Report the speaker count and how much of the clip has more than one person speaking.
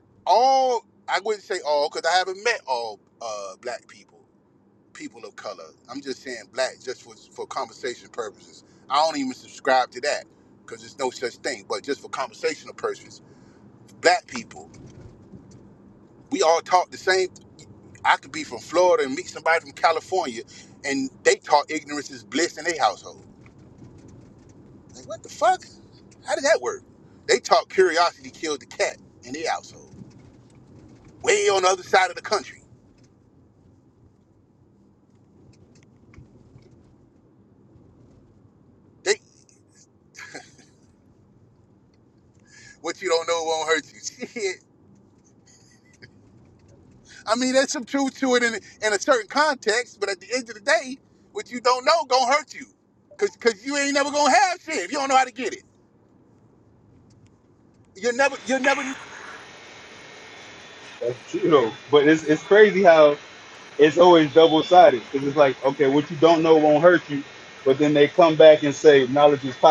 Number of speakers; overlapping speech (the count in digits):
2, no overlap